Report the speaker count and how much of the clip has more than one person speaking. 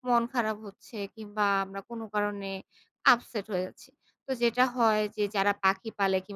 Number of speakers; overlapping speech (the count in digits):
1, no overlap